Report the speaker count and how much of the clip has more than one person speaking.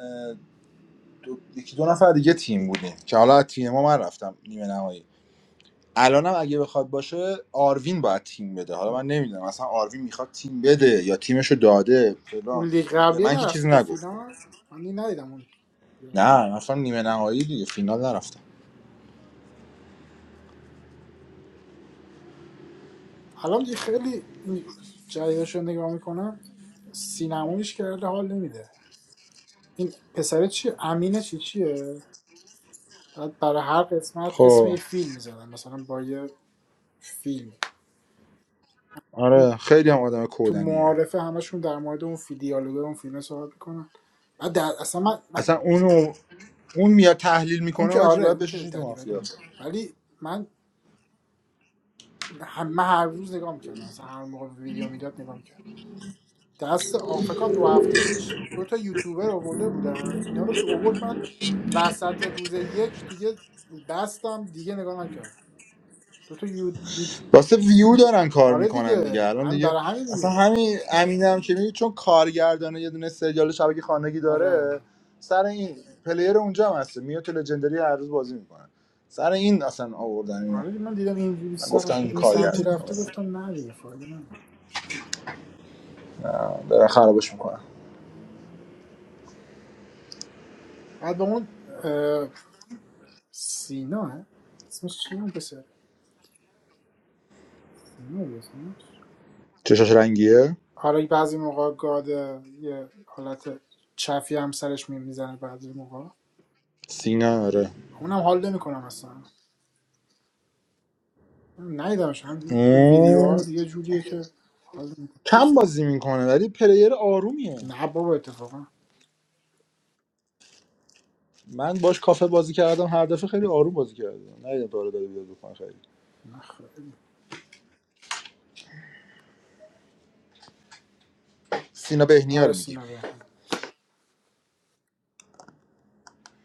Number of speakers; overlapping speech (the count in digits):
2, about 6%